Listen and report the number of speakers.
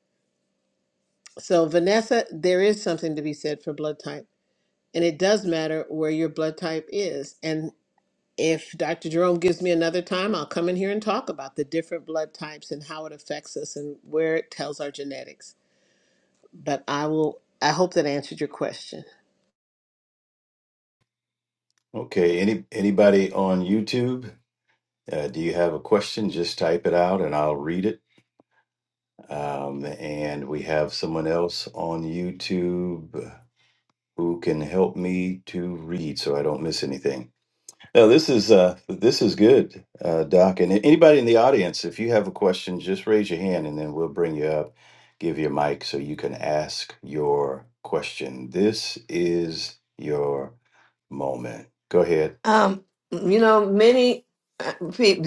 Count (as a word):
three